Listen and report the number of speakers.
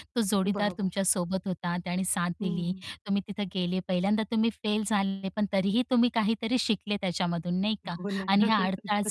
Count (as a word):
two